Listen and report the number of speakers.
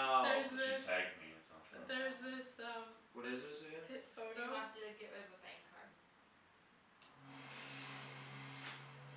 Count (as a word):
four